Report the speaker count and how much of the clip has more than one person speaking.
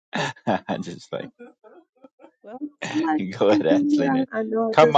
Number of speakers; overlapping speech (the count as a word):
two, about 24%